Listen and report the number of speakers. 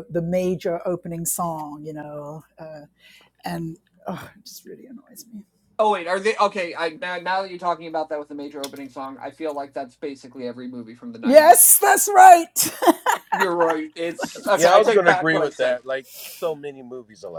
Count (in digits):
3